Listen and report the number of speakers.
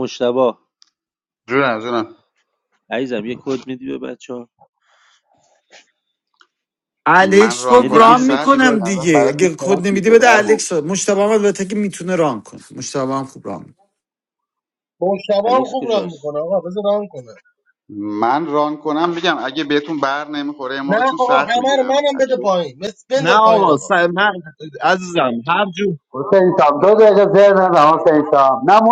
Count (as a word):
six